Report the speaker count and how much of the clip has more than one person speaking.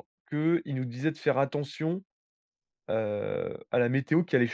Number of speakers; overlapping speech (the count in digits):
1, no overlap